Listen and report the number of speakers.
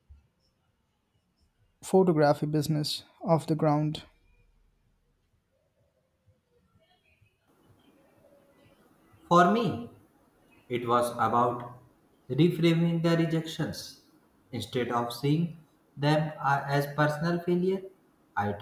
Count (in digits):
2